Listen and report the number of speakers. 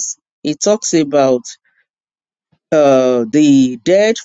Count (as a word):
one